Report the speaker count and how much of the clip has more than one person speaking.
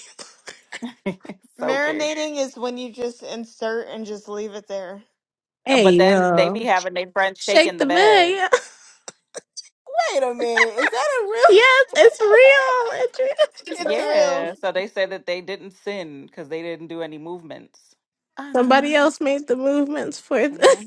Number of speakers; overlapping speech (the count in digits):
4, about 18%